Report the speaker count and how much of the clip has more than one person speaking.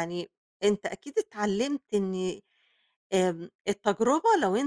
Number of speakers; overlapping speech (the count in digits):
1, no overlap